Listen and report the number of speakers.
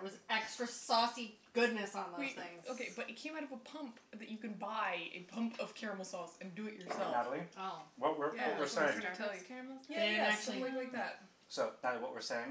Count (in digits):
4